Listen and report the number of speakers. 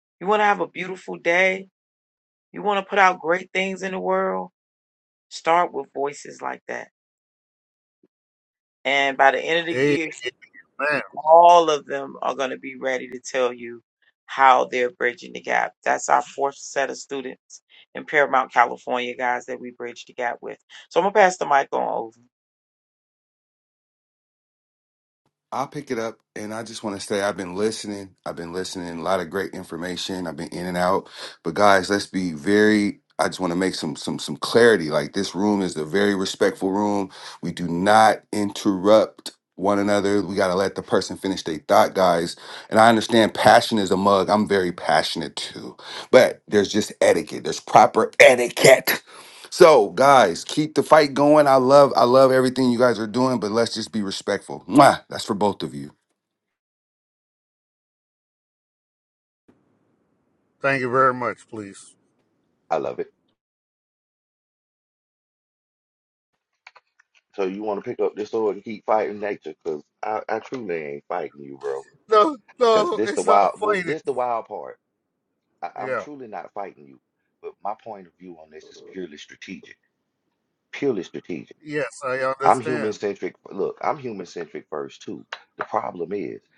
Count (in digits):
4